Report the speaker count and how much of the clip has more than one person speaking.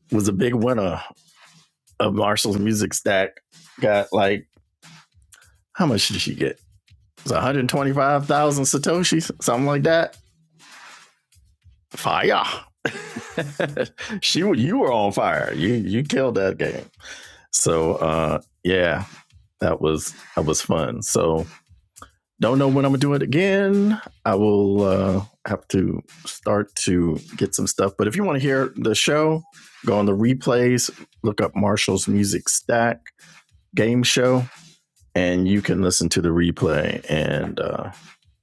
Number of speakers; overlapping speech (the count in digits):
1, no overlap